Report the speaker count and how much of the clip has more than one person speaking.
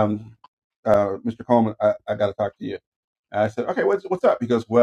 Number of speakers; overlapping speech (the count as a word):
one, no overlap